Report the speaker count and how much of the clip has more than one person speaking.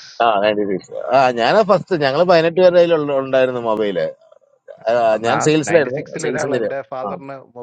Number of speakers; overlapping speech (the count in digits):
2, about 22%